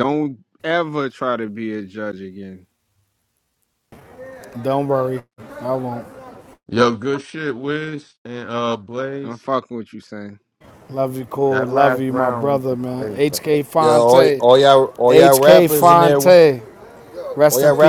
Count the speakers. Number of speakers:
4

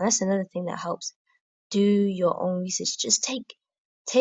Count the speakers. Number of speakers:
1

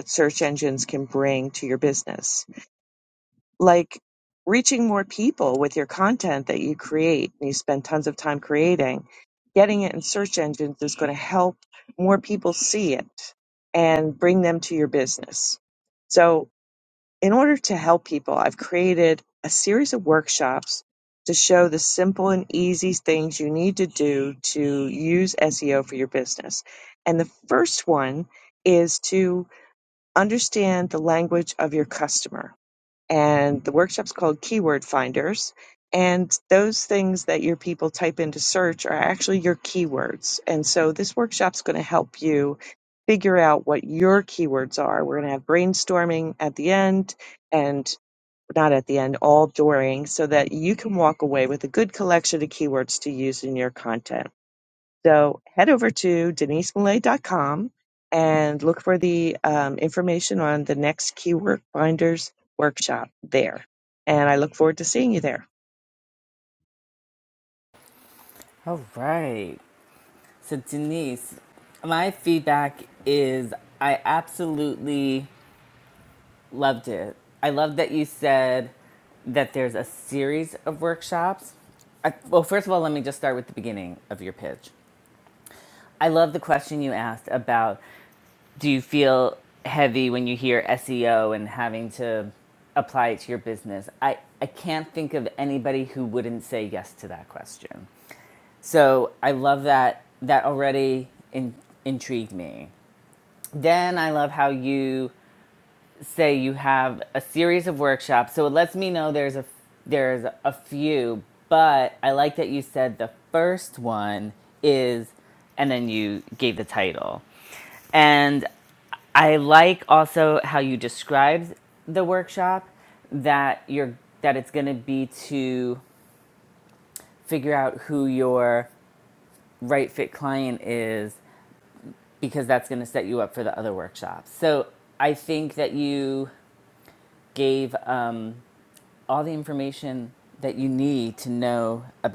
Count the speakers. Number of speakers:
2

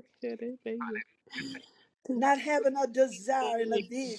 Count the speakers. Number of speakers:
2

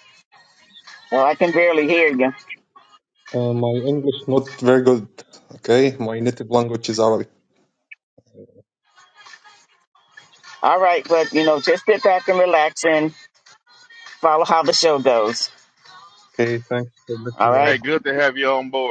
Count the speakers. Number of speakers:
3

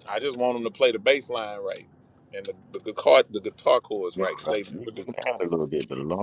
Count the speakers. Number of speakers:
2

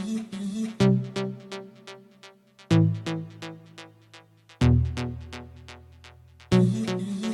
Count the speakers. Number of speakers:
0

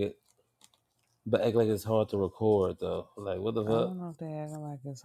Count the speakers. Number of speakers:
2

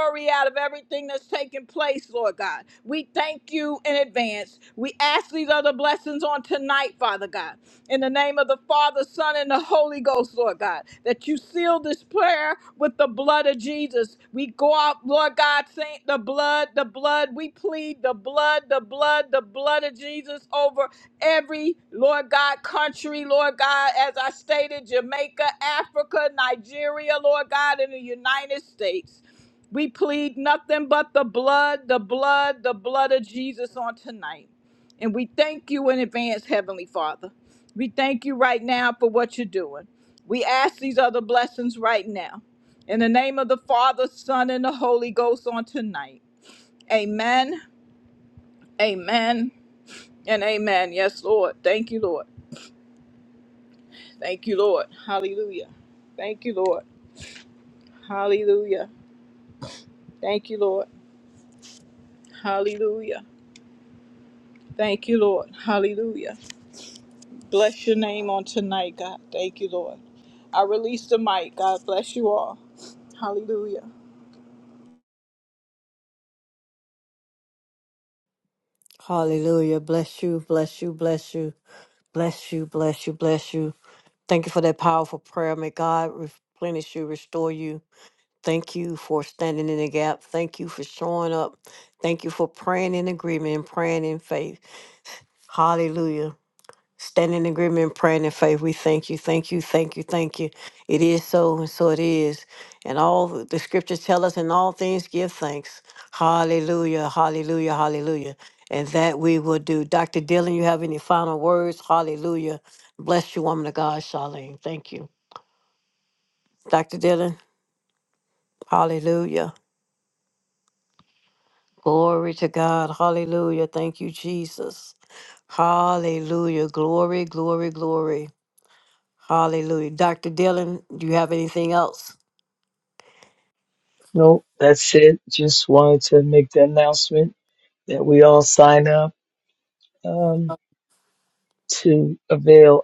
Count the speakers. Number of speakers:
3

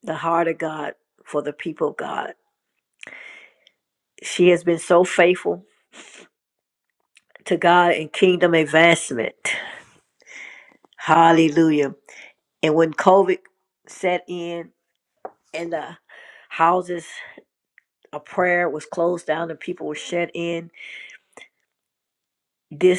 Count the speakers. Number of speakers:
1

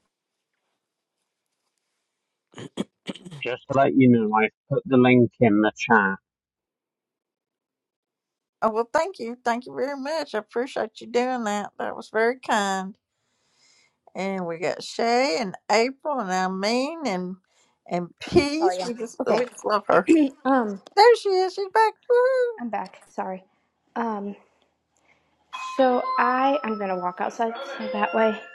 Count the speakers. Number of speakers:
3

